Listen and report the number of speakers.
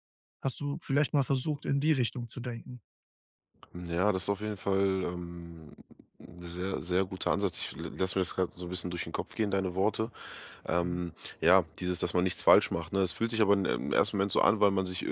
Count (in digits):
2